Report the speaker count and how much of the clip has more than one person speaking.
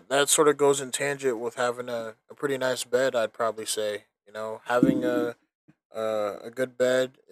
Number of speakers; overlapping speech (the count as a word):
one, no overlap